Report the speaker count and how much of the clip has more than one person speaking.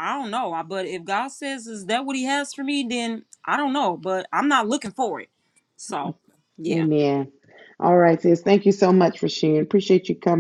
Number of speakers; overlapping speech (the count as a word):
two, about 2%